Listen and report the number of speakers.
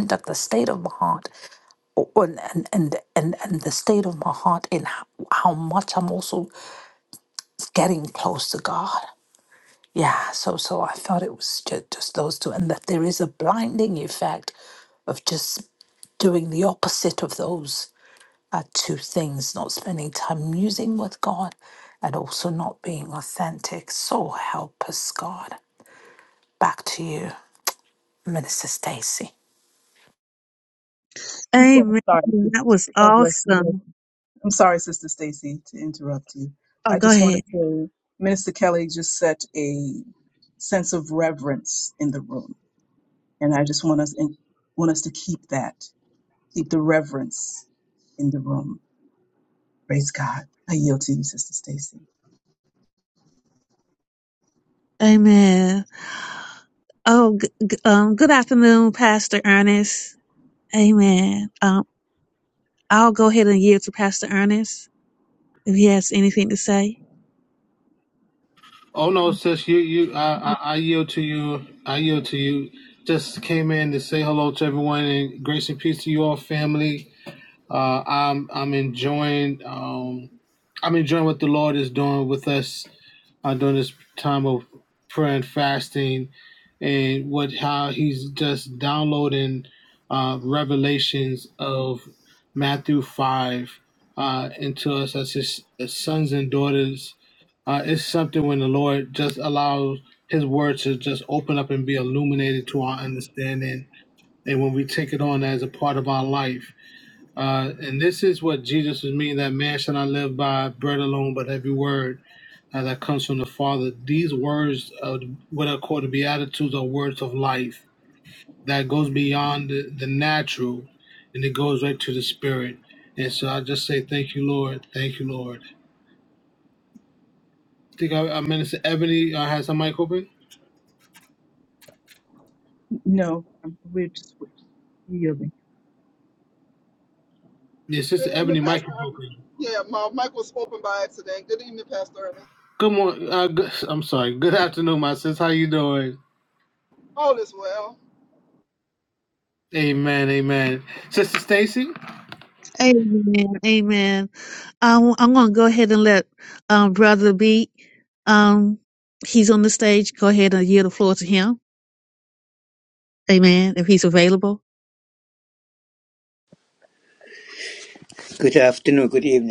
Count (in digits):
6